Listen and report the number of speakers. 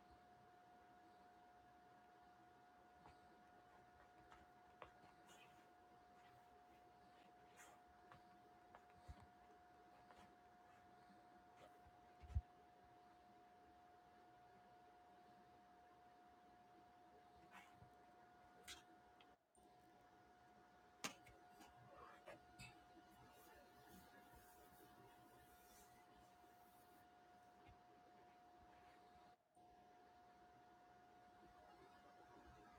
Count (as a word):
zero